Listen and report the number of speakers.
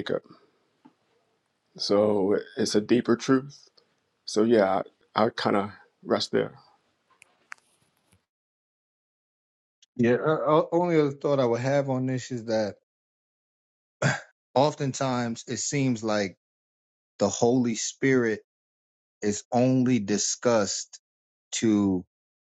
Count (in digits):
2